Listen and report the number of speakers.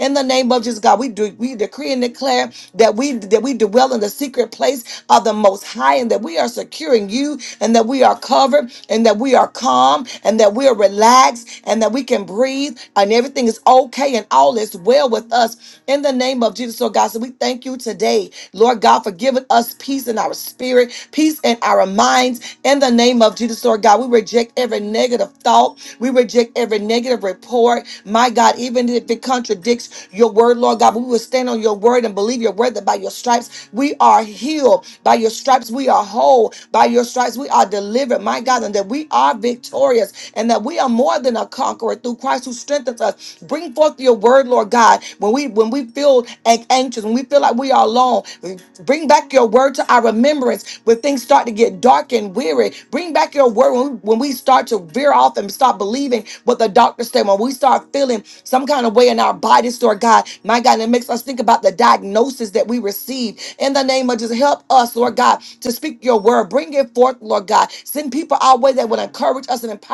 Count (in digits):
1